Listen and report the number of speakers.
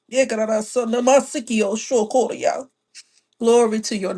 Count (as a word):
one